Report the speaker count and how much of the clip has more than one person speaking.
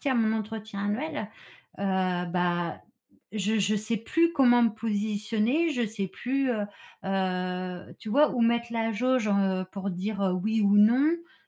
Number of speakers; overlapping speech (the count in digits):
1, no overlap